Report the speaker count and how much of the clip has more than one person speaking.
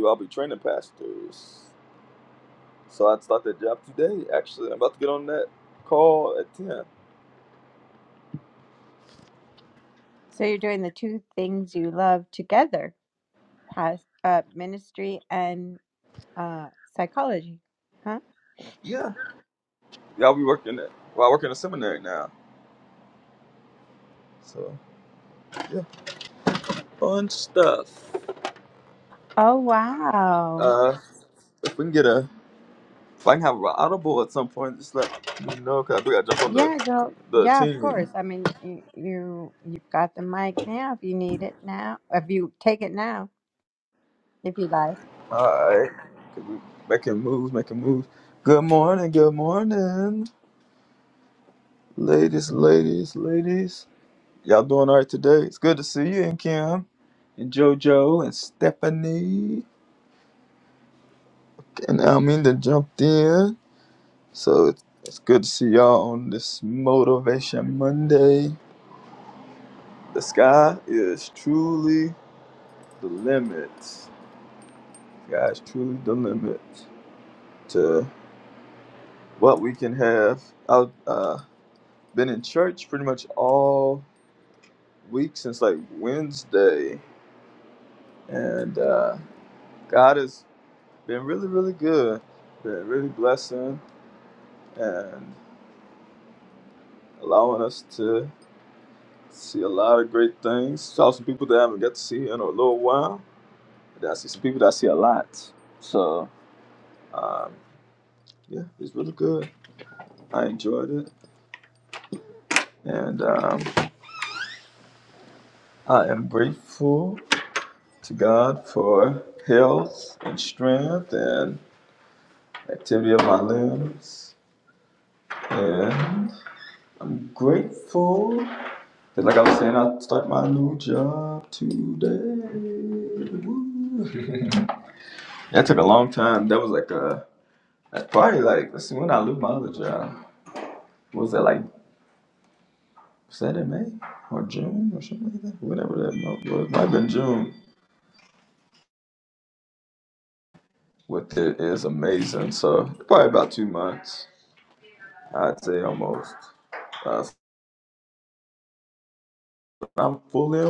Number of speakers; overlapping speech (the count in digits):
2, about 1%